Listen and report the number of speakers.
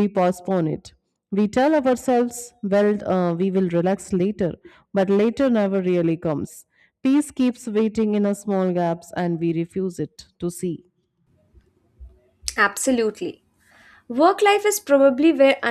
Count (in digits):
2